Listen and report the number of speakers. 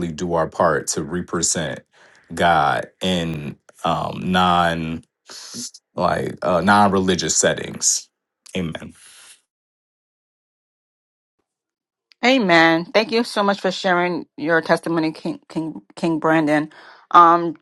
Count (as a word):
two